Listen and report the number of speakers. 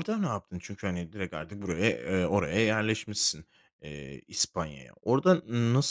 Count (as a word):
one